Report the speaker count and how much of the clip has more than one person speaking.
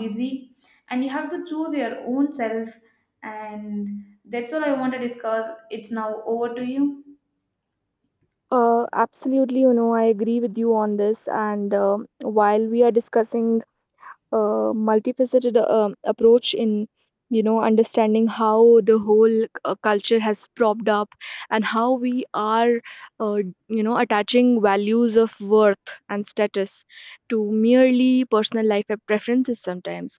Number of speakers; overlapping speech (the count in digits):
2, no overlap